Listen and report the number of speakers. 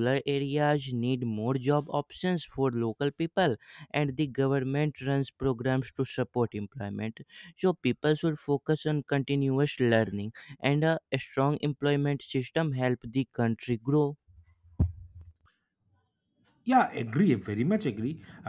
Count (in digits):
2